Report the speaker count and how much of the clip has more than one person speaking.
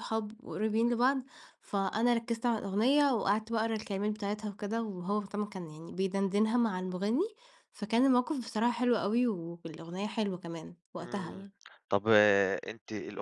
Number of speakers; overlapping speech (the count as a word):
two, about 3%